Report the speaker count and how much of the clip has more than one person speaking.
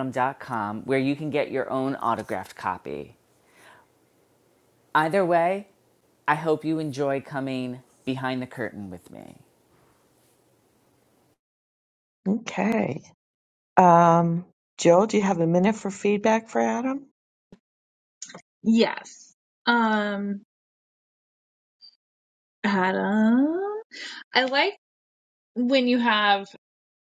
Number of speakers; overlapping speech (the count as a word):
three, no overlap